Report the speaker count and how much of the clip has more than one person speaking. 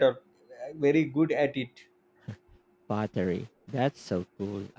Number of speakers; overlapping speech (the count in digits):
2, no overlap